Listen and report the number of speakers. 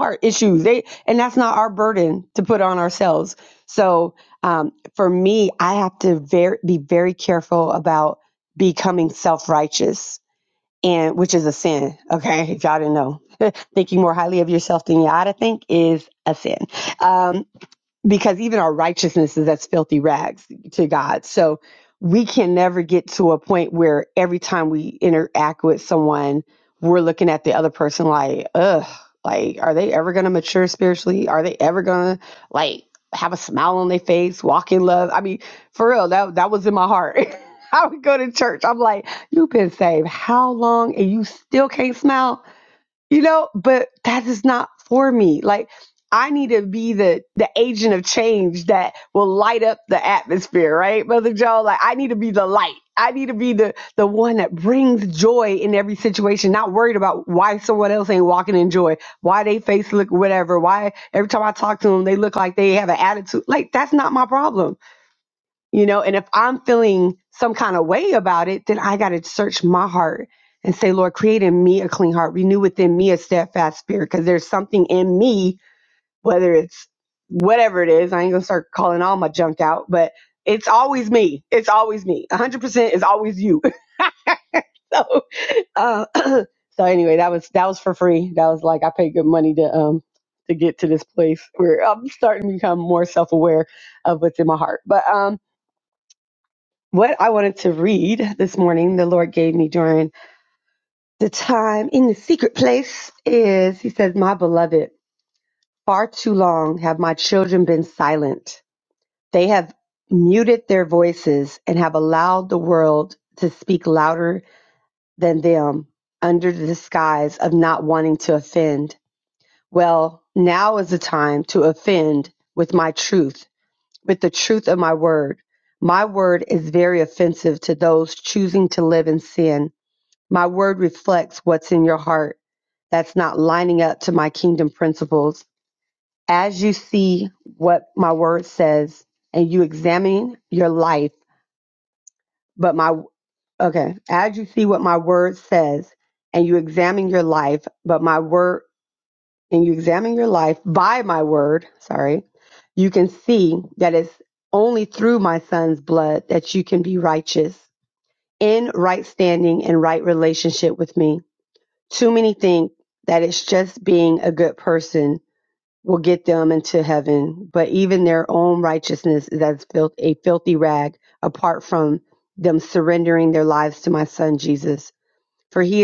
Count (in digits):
1